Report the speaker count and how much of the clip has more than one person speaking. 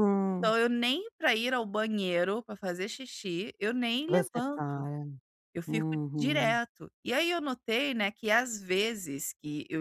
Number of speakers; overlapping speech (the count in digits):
2, about 13%